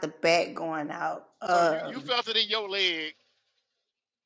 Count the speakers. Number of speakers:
two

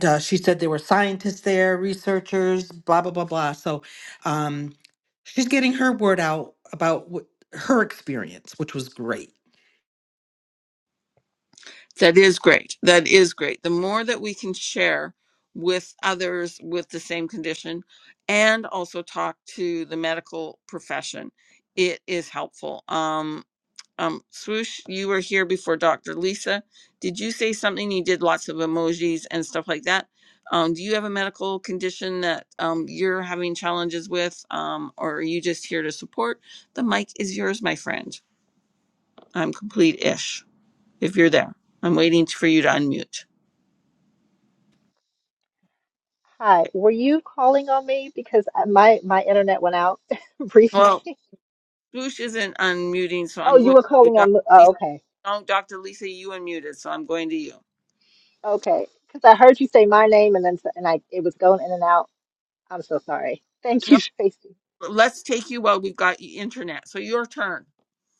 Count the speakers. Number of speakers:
three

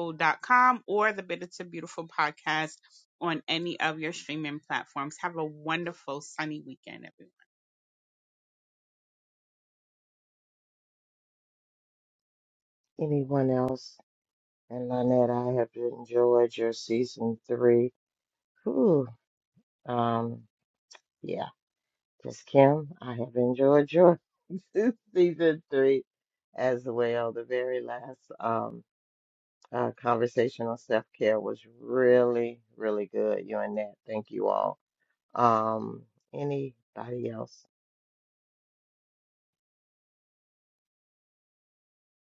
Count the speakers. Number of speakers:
two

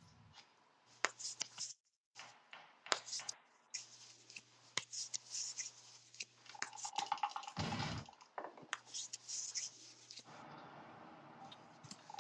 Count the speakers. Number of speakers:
zero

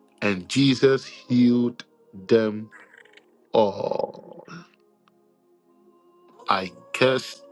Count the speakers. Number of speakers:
one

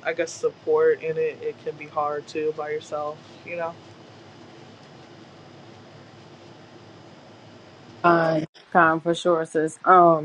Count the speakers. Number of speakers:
two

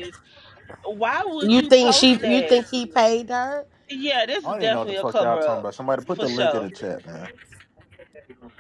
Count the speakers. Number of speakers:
three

